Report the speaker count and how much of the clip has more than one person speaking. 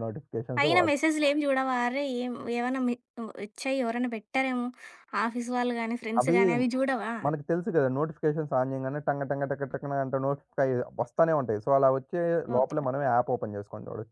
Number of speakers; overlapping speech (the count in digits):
2, about 6%